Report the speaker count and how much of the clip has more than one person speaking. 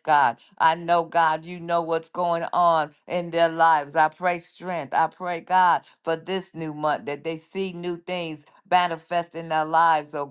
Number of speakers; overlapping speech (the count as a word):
one, no overlap